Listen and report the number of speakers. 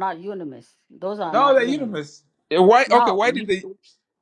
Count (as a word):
two